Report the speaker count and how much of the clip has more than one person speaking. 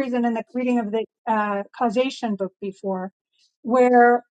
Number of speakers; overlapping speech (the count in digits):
1, no overlap